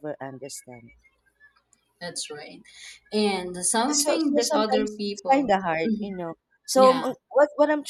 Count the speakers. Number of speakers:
2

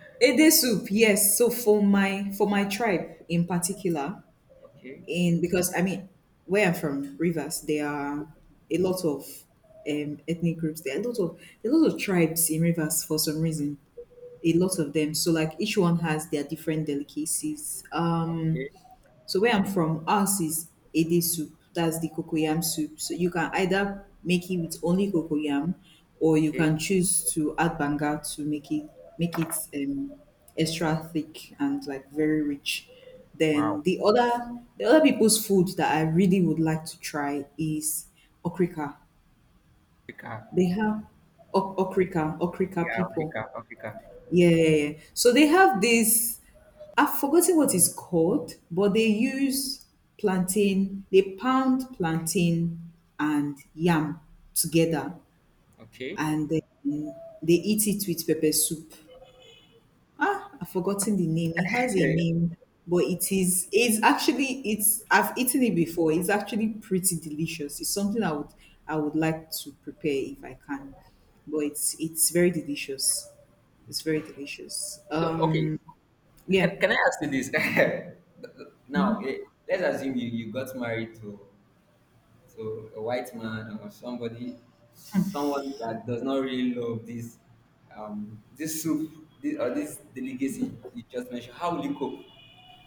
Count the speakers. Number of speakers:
2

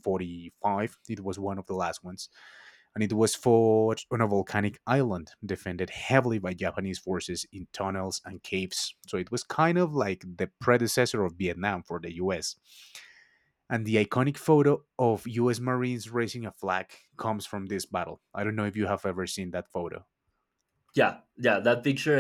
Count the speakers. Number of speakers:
2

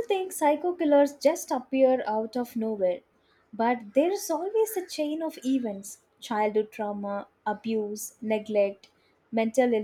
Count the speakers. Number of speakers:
1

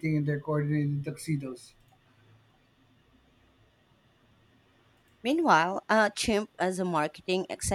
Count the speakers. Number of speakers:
2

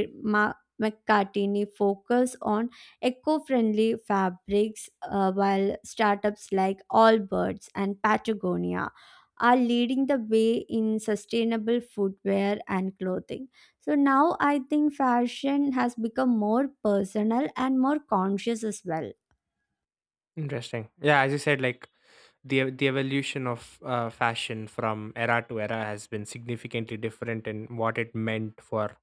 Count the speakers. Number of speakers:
2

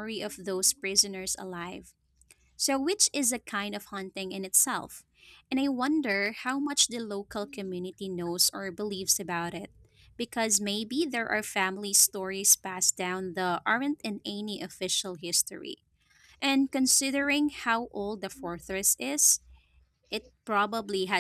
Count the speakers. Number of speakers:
1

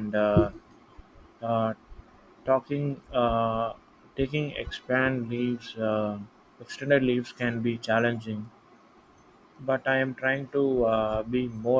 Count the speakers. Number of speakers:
1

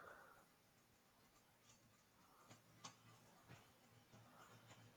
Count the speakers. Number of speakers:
0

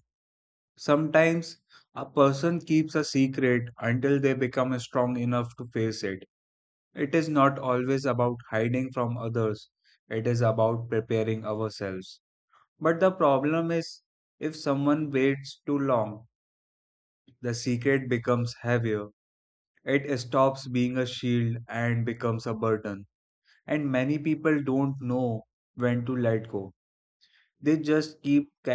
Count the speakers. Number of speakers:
1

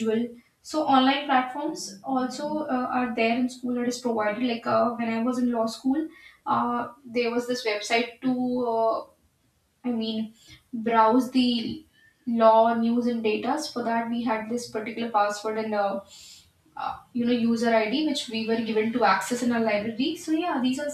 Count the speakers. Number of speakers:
1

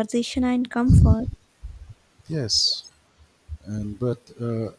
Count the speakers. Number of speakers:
2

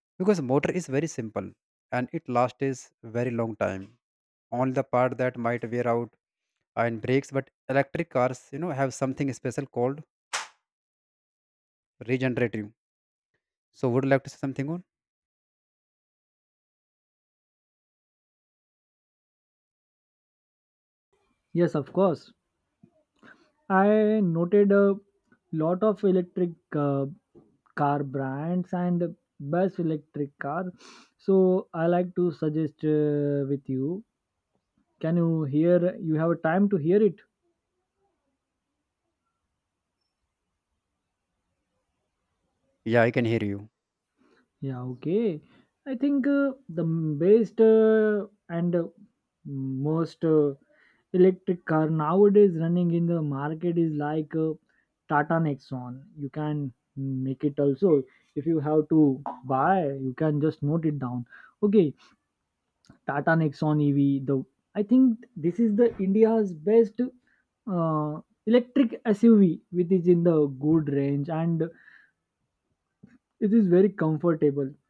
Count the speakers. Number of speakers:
2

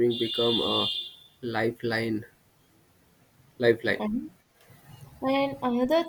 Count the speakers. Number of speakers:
2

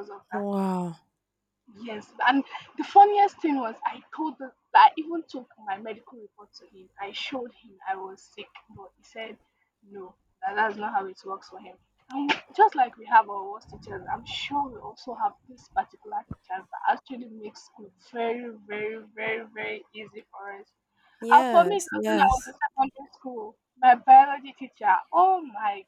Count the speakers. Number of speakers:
2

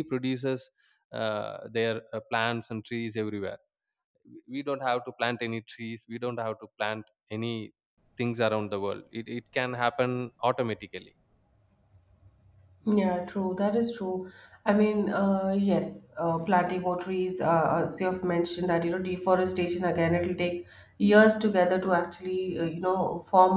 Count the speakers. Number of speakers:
2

